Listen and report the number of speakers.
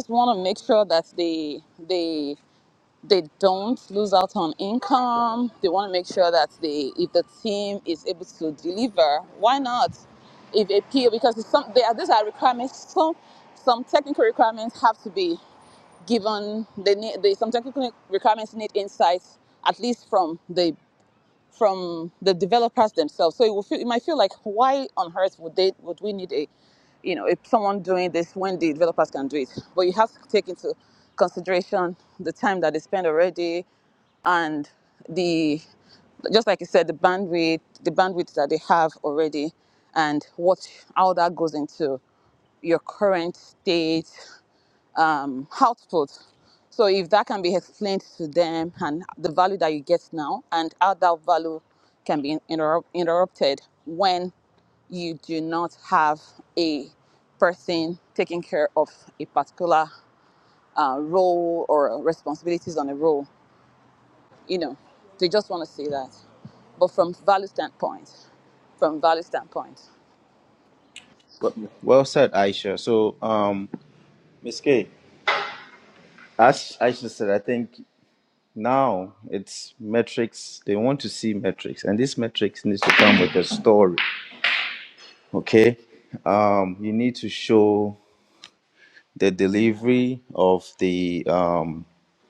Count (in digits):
2